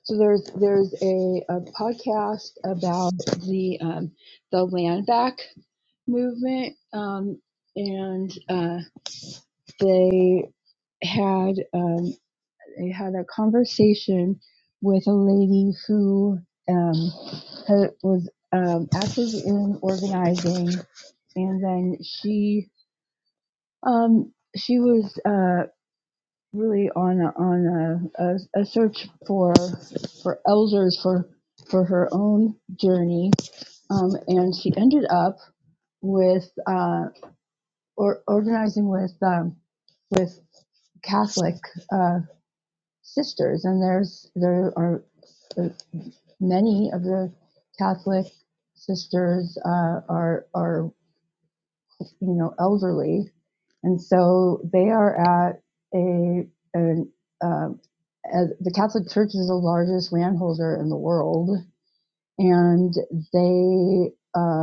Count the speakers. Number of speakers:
1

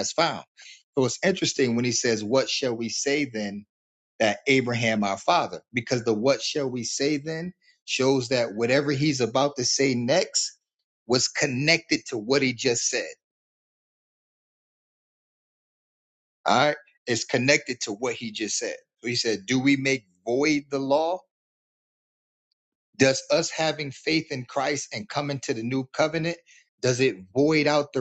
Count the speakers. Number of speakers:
1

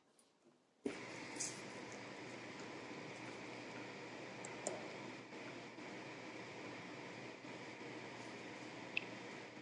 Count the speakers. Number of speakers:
0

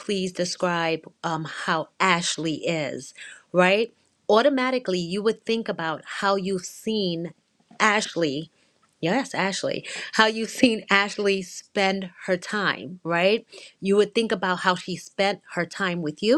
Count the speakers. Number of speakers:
1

